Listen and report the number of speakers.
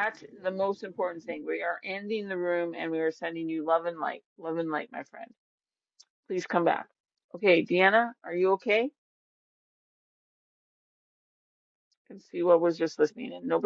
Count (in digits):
1